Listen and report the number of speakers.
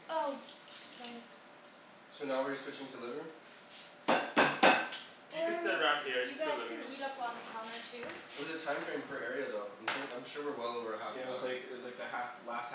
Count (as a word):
four